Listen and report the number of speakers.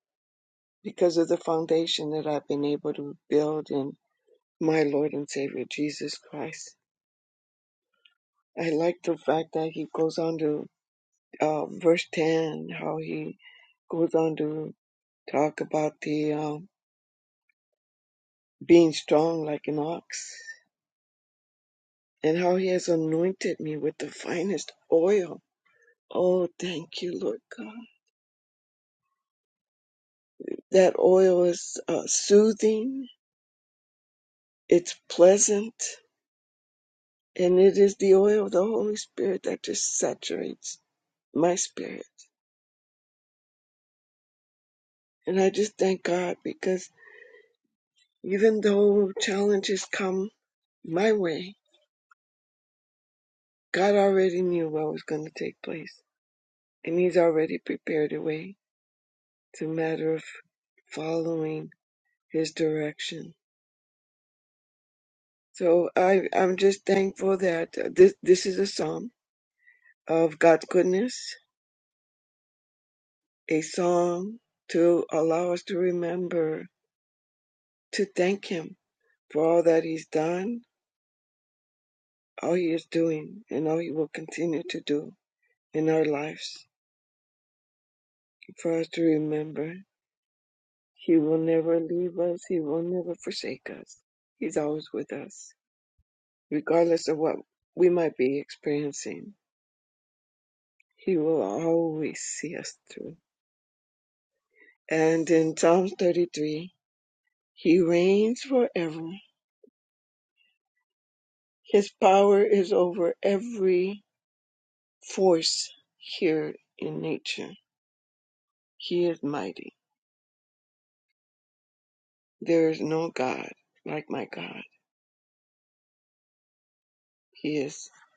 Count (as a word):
one